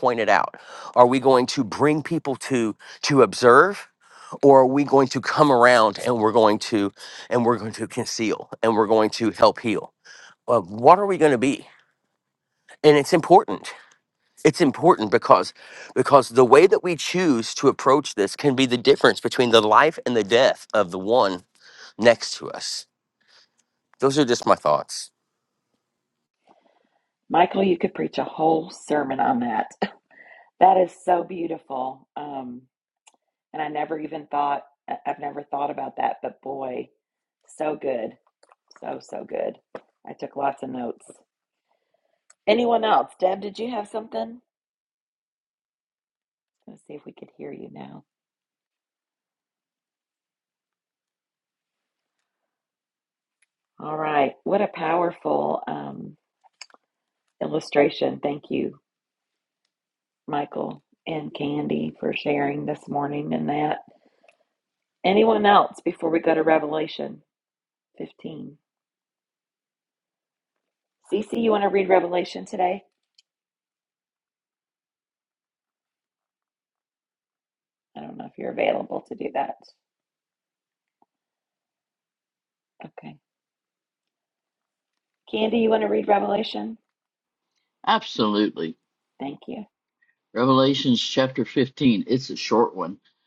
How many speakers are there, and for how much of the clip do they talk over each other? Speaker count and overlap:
3, no overlap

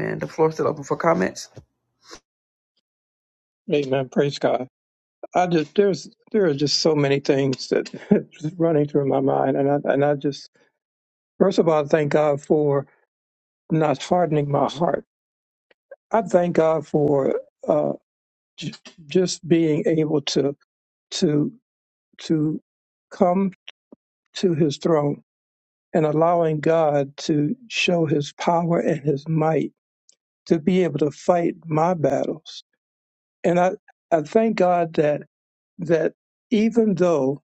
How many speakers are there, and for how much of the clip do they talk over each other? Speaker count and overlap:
2, no overlap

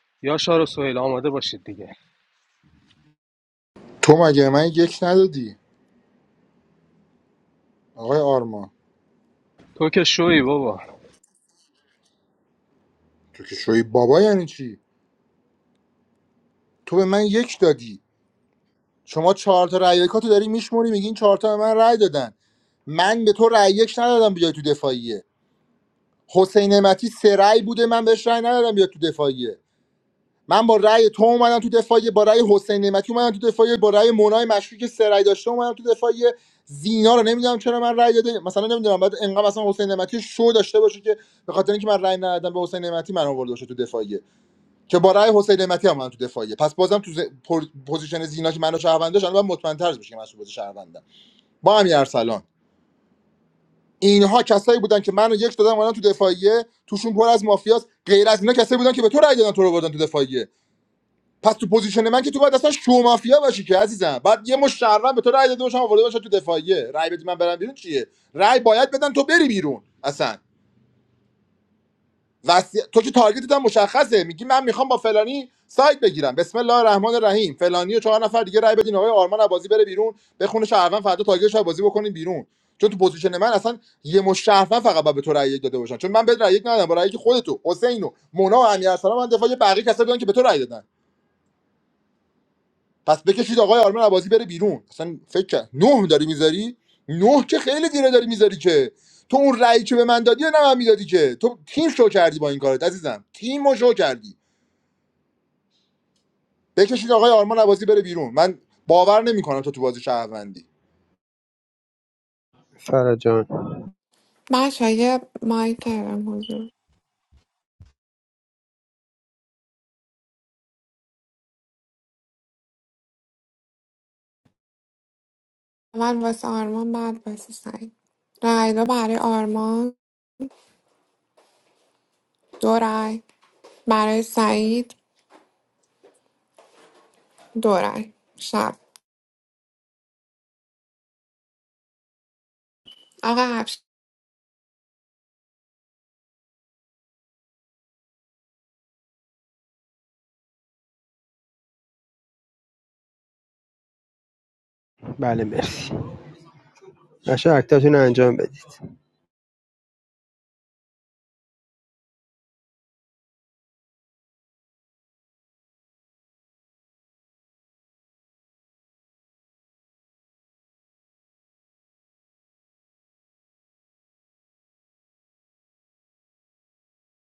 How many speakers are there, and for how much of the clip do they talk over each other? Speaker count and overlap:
4, no overlap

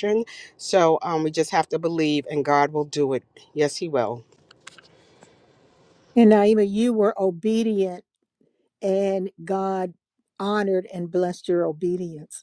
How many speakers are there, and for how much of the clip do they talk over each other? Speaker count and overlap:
2, no overlap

